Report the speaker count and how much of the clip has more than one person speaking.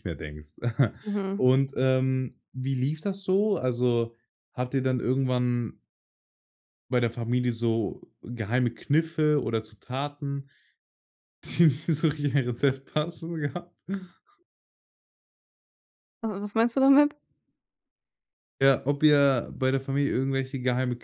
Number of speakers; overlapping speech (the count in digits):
2, under 1%